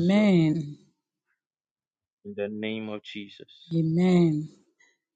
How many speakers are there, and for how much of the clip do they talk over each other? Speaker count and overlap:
2, about 6%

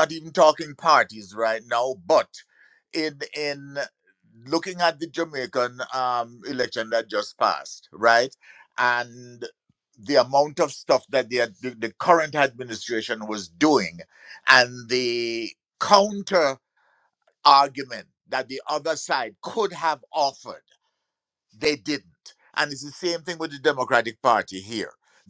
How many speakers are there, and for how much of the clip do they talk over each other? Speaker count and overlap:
1, no overlap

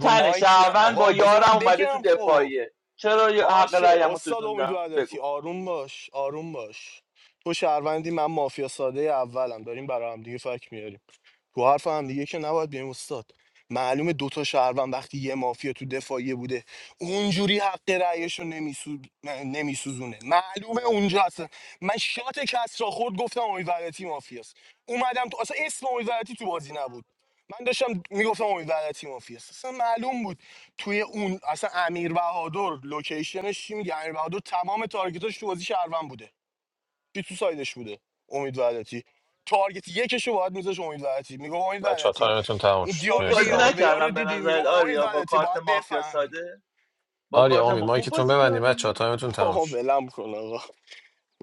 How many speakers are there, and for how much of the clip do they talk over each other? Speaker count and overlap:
3, about 21%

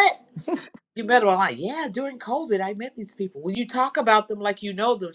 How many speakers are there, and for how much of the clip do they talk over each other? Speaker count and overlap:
1, no overlap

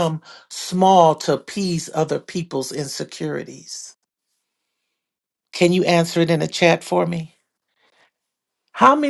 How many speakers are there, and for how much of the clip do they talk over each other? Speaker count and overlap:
1, no overlap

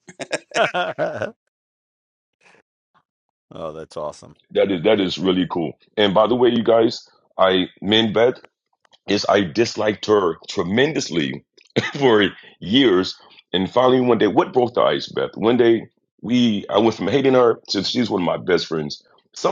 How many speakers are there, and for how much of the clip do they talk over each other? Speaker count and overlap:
2, no overlap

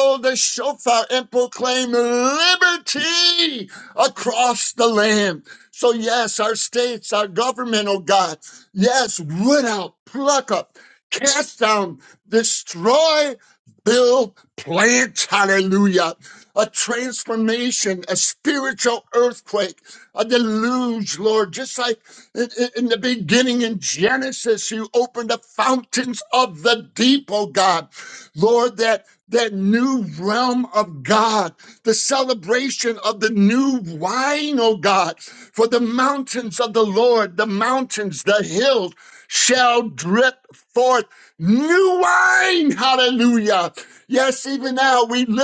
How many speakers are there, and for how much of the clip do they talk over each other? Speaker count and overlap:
1, no overlap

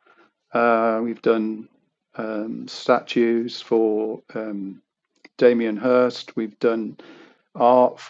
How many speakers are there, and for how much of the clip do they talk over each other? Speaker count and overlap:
1, no overlap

